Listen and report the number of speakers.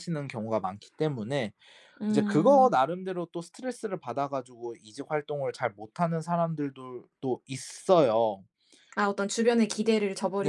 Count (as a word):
two